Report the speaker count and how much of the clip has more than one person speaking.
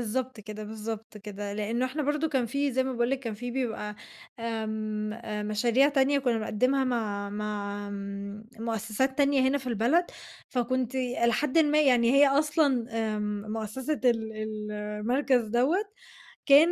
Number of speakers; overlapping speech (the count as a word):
one, no overlap